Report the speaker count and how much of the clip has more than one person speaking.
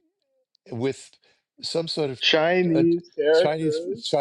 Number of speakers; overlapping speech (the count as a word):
two, about 20%